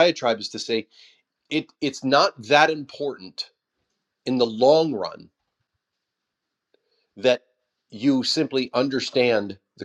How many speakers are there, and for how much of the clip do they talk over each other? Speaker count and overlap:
1, no overlap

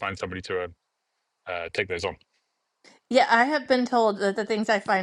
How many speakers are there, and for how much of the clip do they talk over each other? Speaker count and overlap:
2, no overlap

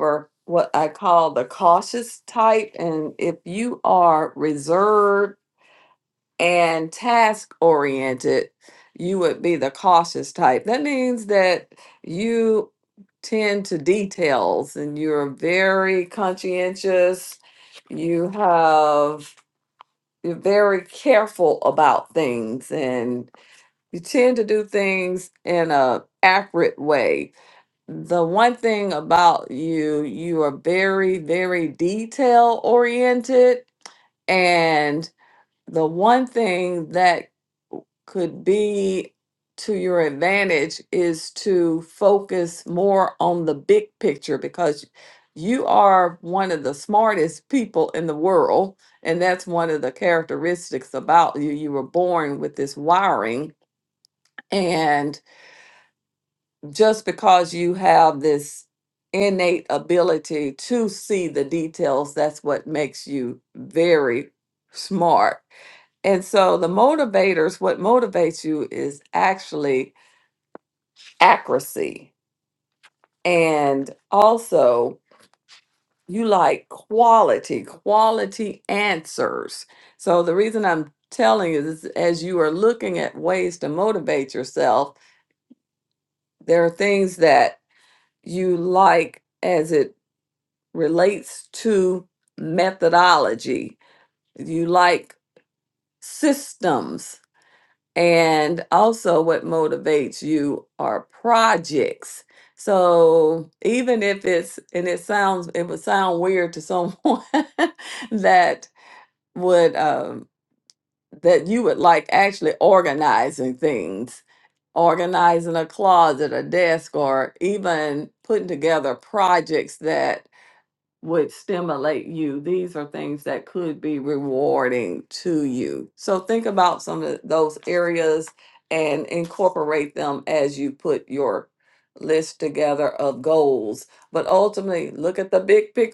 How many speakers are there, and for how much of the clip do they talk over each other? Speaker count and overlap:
1, no overlap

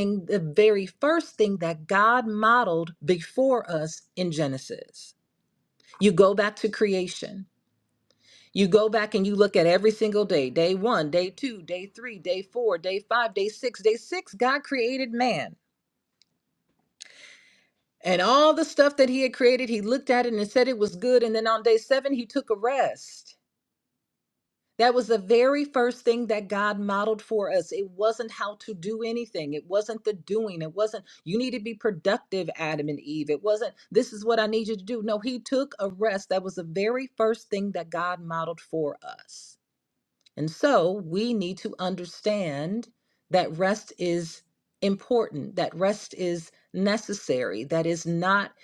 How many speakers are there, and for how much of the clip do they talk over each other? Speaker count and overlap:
1, no overlap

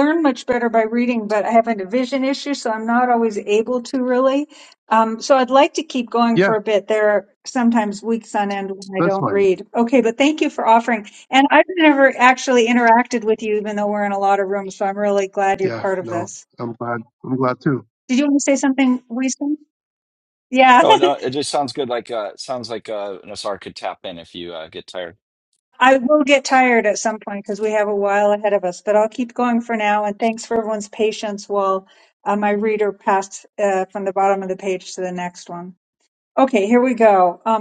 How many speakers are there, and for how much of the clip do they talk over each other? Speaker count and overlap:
3, about 4%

